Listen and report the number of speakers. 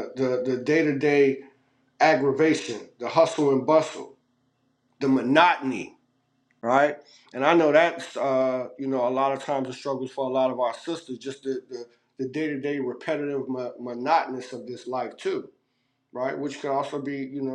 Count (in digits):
1